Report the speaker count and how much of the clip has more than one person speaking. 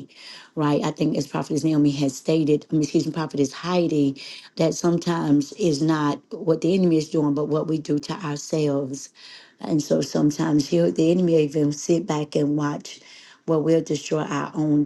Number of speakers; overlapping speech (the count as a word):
one, no overlap